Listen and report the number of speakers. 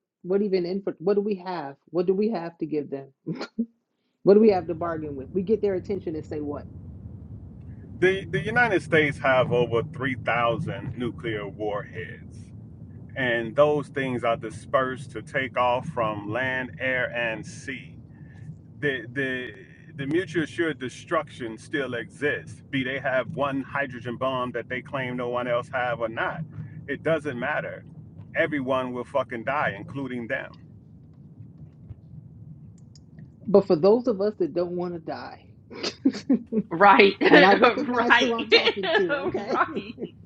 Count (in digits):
3